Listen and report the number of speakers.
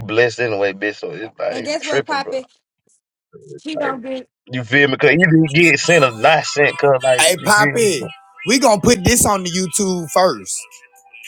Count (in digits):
3